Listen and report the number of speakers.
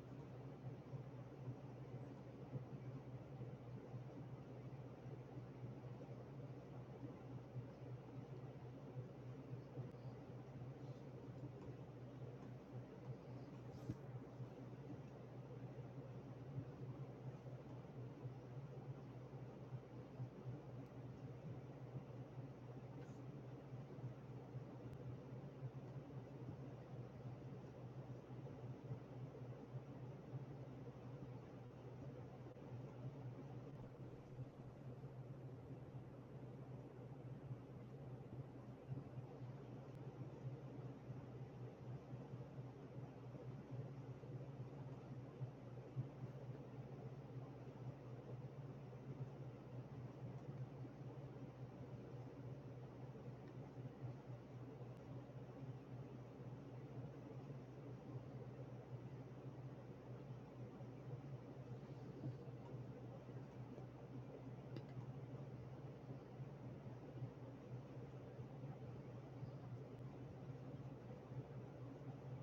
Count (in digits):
0